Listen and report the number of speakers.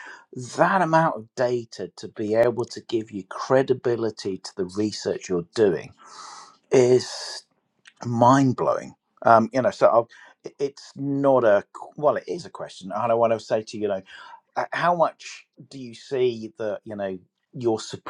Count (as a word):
one